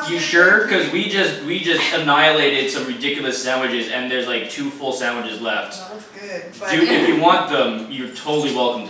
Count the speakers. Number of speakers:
1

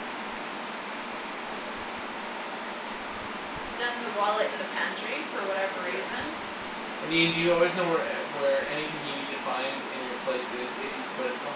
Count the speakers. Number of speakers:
2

